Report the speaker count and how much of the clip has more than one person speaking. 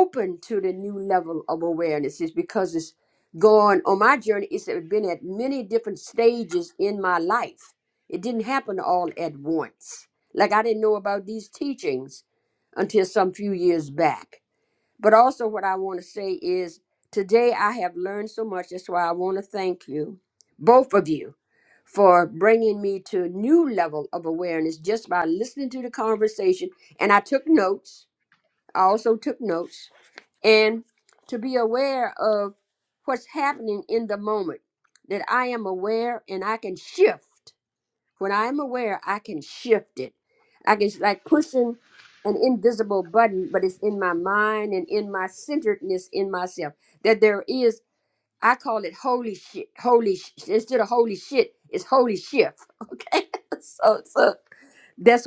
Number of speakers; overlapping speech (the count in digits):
1, no overlap